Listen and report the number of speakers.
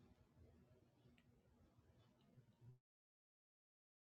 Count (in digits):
0